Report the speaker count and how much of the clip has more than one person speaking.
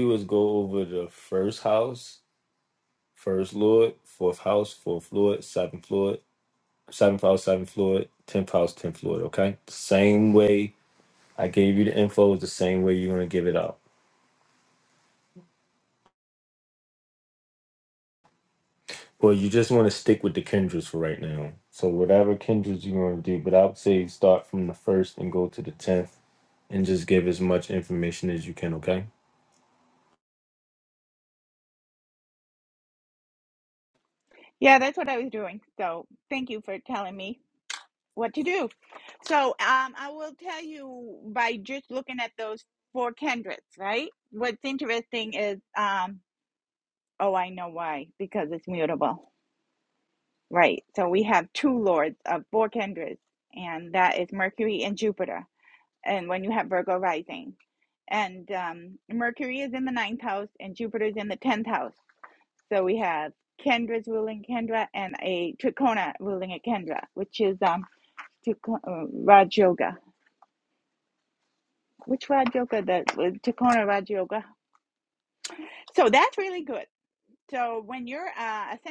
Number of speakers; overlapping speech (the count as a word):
two, no overlap